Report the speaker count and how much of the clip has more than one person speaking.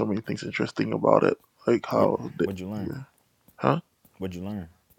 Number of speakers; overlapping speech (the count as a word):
two, about 6%